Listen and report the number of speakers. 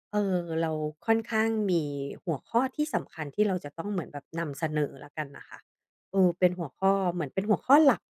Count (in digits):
1